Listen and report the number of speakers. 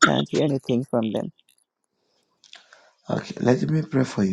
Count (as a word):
two